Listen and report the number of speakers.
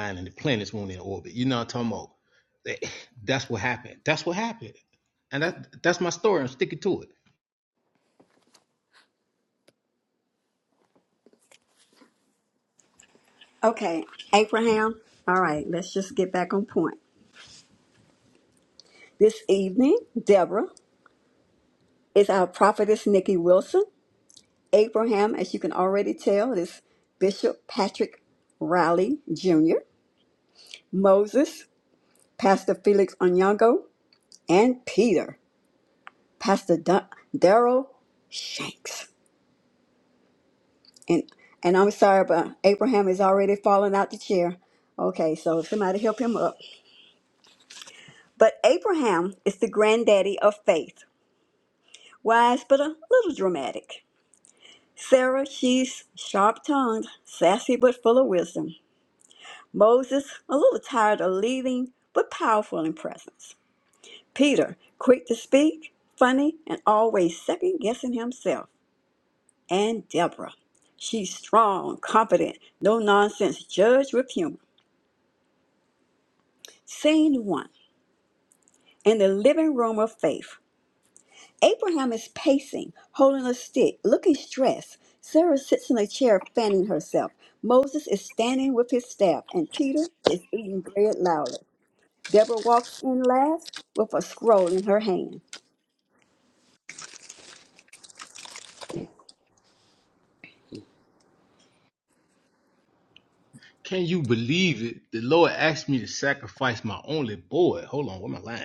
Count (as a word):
two